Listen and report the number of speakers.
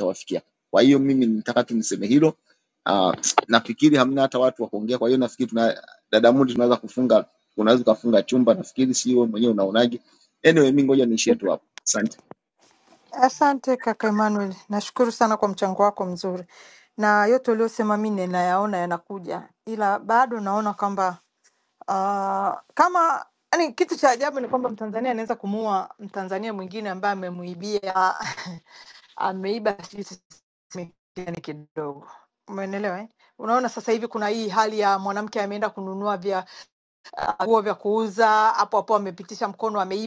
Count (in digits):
2